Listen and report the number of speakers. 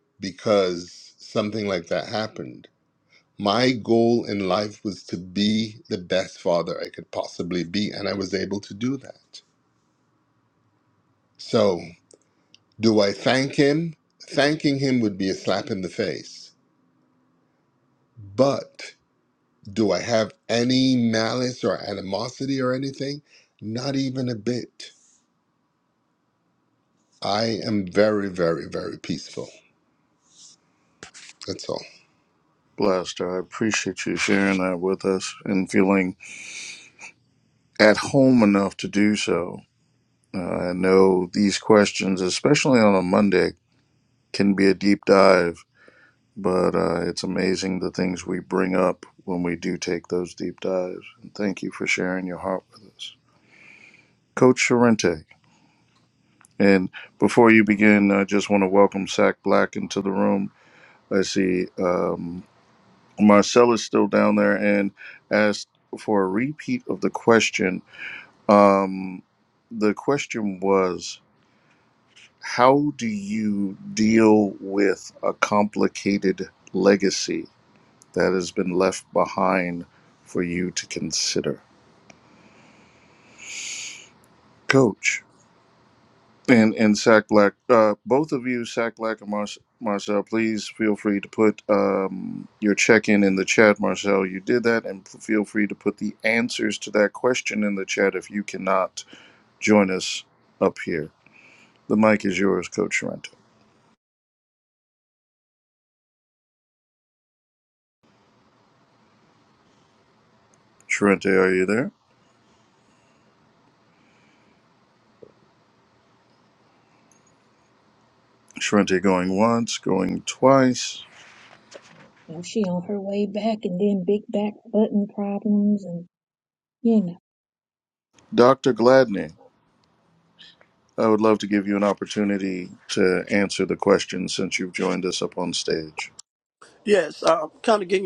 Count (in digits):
4